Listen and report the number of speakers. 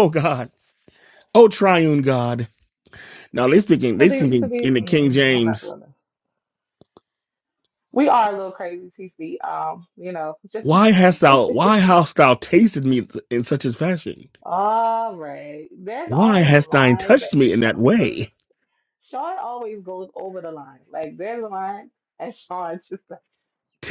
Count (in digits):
2